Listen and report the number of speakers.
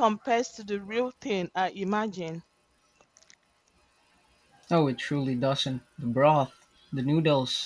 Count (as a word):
two